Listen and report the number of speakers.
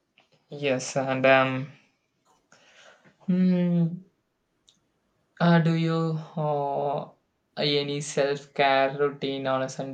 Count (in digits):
1